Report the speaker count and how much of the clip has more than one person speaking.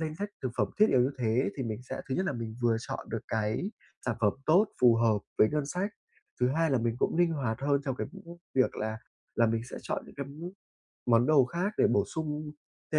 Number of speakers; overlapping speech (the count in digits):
1, no overlap